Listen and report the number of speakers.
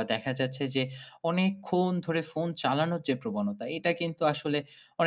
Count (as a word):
one